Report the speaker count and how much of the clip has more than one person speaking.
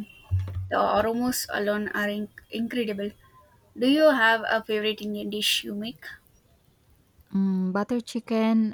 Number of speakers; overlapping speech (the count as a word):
two, no overlap